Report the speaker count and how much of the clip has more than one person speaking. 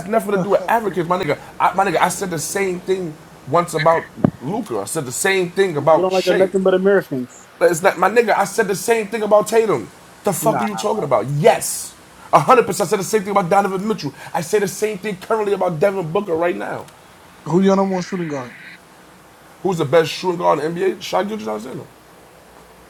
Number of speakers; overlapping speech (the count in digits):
3, about 5%